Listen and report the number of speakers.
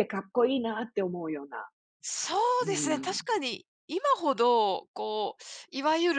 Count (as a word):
two